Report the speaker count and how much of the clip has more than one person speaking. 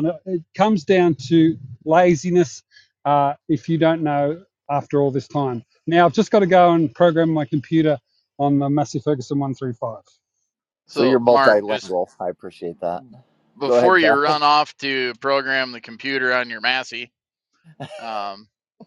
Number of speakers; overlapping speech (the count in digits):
3, about 8%